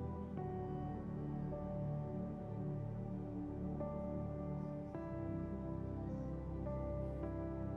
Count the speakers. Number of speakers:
zero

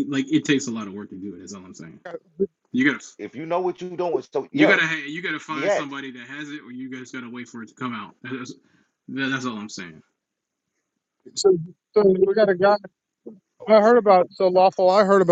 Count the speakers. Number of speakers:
three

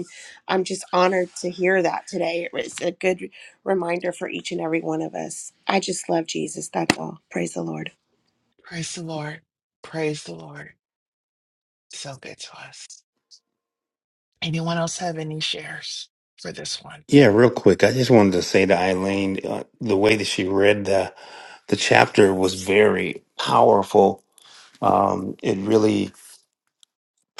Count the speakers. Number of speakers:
three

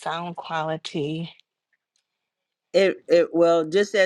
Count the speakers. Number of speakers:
two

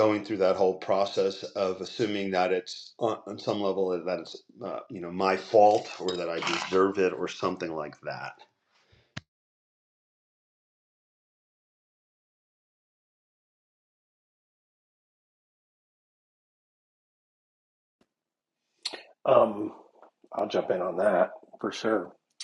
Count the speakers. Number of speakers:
two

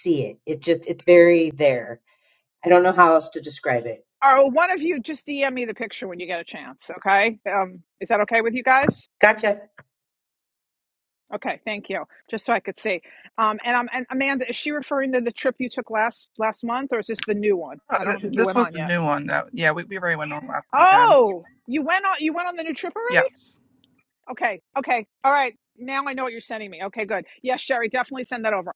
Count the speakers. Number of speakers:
three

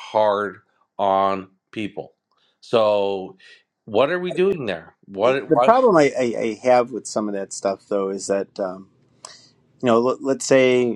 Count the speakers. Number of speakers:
two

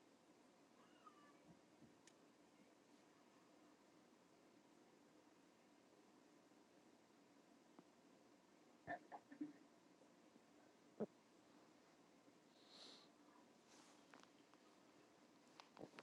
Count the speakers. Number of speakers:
zero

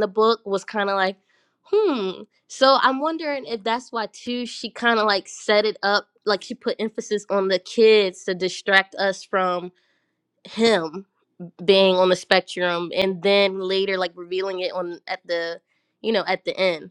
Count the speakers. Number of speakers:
one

